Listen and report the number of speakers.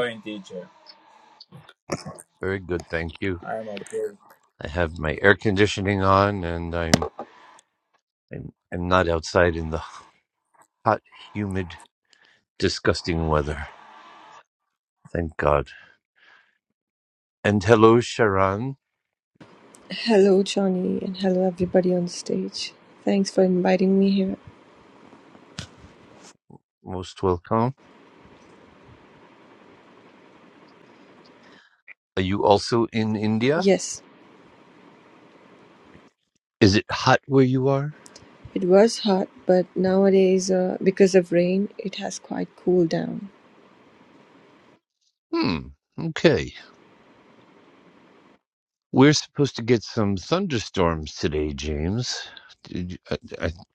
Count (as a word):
three